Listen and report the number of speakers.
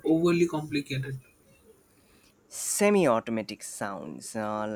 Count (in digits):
2